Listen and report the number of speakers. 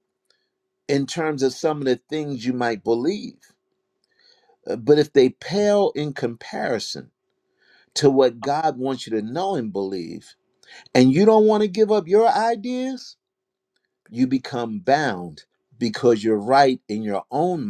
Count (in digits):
1